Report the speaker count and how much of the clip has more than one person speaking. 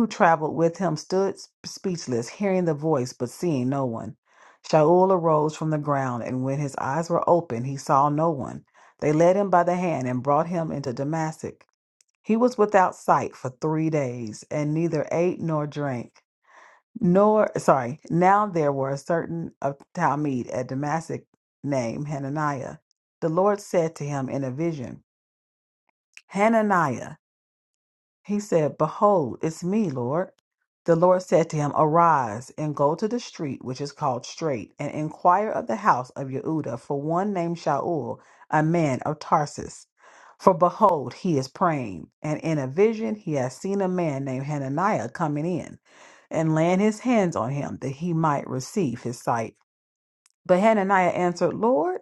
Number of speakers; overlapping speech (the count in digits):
1, no overlap